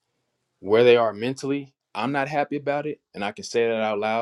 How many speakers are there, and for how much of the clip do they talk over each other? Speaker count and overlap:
1, no overlap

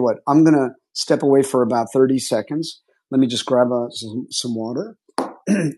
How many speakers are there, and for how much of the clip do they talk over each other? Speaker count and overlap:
1, no overlap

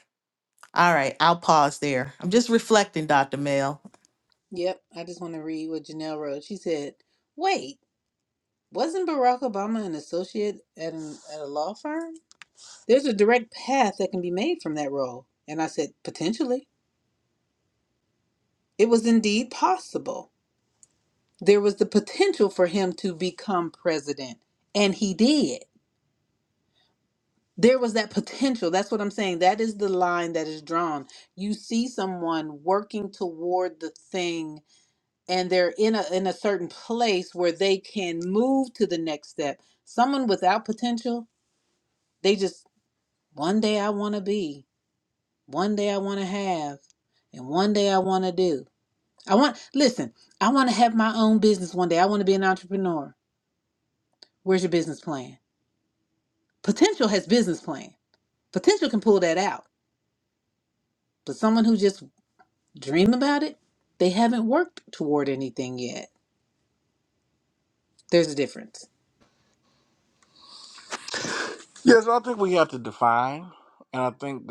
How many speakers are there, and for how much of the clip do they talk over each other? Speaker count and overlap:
3, no overlap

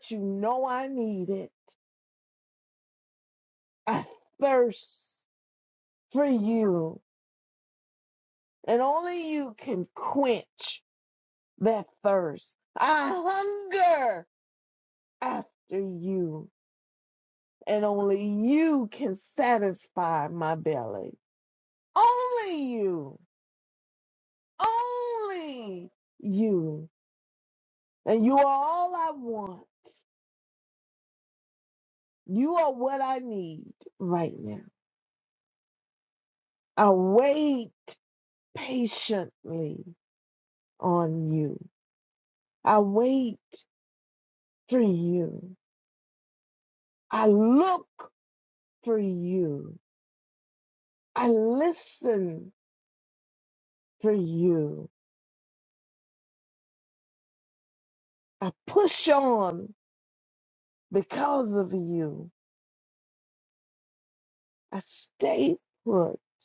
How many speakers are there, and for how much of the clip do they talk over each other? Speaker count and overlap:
1, no overlap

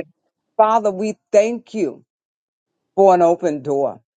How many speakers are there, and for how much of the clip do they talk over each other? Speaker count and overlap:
1, no overlap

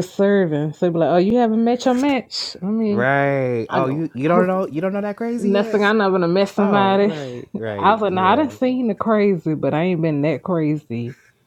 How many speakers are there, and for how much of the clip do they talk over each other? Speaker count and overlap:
2, about 22%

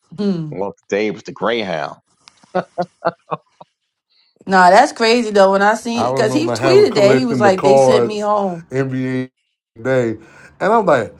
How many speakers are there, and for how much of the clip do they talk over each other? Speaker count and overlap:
3, about 20%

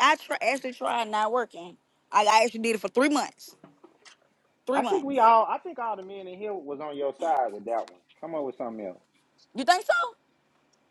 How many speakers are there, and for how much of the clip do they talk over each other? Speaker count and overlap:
2, about 3%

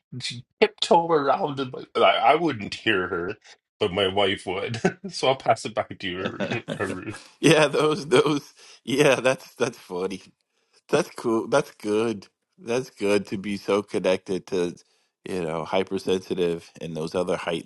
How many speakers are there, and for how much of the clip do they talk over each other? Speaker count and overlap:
2, no overlap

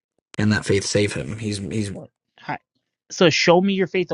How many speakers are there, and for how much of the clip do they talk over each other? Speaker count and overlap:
2, under 1%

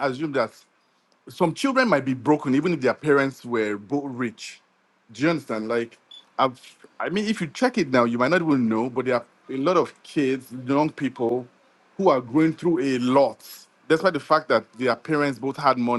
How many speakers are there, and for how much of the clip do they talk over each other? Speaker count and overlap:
1, no overlap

